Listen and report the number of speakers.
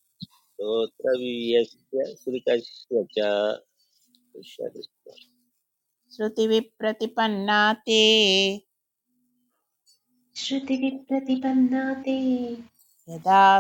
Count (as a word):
three